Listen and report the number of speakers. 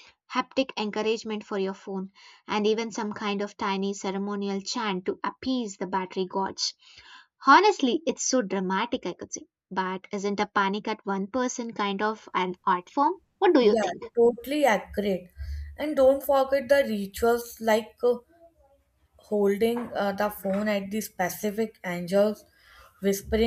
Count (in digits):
2